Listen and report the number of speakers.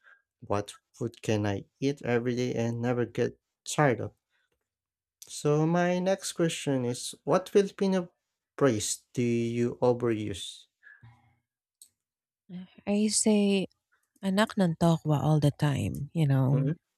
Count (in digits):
2